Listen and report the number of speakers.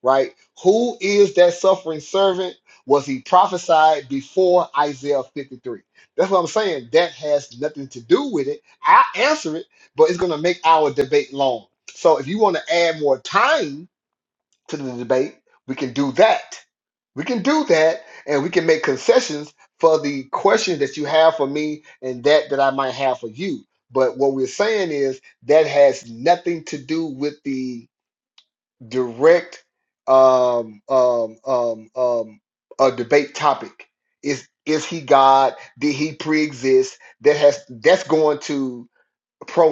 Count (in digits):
1